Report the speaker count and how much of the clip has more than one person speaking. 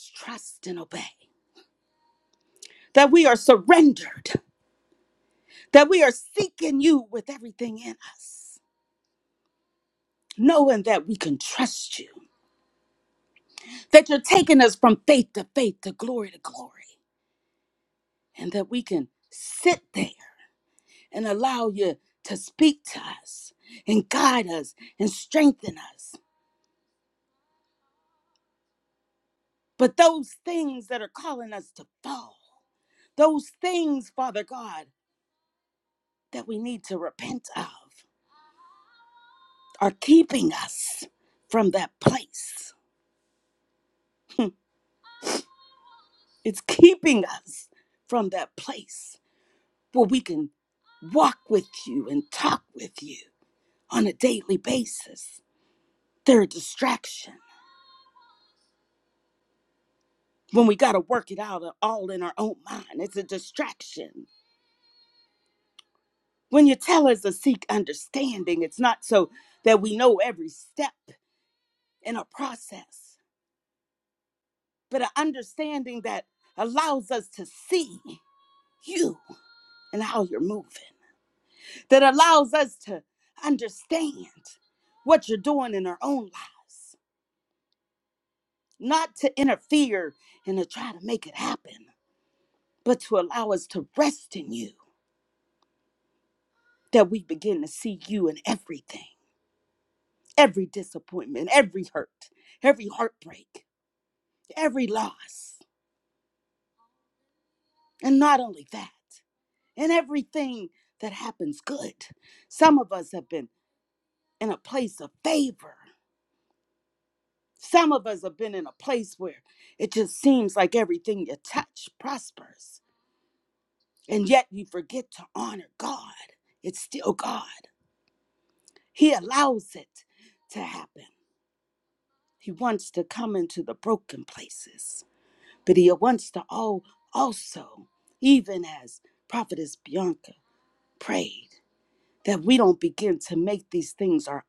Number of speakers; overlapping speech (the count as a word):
one, no overlap